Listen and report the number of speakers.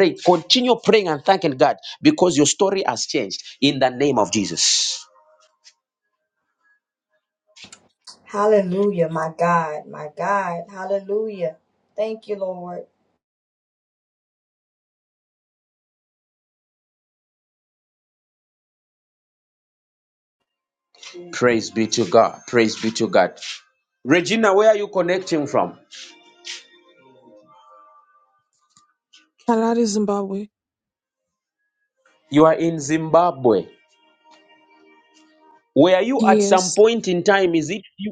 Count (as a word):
three